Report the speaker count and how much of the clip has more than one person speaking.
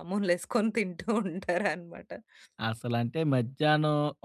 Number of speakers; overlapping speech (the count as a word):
two, no overlap